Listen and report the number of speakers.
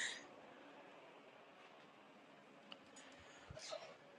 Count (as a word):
zero